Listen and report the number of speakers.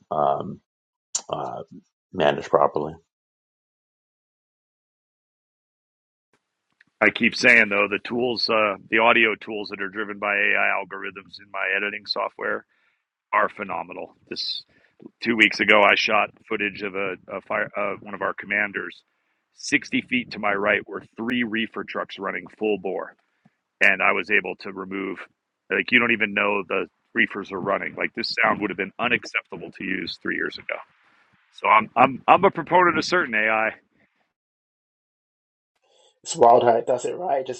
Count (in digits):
3